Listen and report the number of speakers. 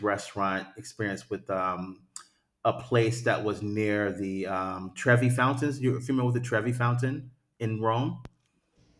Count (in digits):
1